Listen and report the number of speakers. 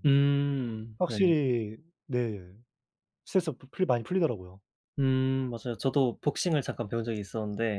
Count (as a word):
two